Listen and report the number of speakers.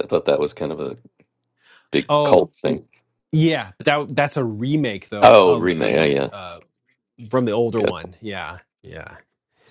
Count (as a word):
two